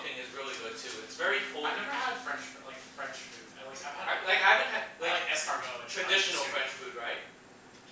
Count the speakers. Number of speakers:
two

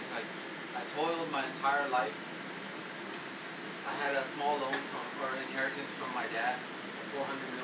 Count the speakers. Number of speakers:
one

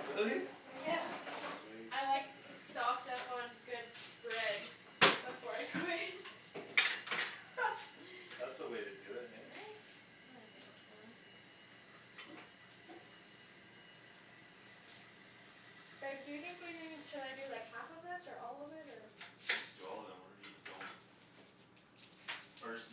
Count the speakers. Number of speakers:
three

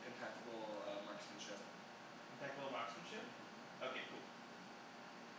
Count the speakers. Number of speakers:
two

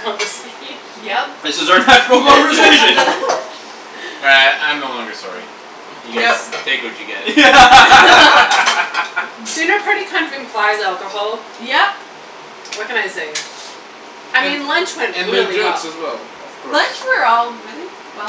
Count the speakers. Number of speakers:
four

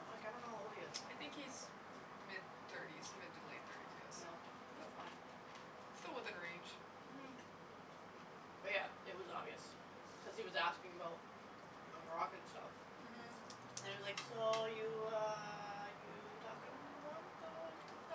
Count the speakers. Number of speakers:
two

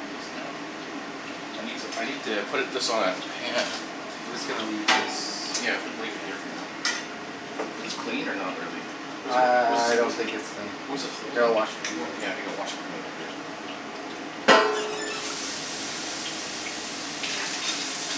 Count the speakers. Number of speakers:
two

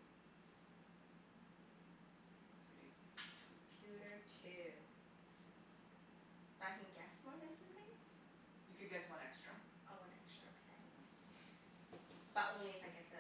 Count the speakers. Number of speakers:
two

